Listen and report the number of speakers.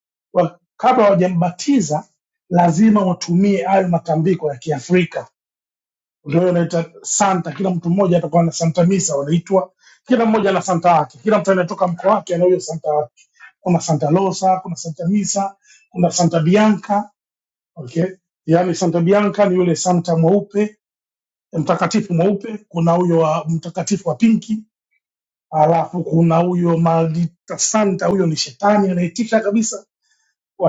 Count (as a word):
one